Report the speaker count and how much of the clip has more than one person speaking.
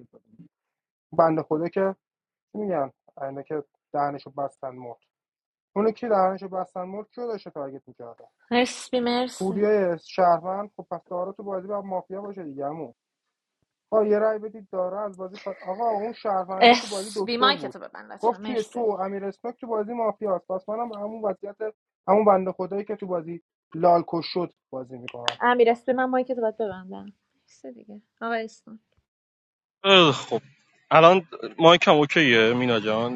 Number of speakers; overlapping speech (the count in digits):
3, about 6%